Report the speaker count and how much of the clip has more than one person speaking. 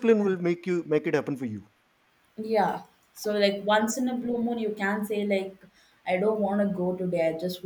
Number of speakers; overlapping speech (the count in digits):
2, about 3%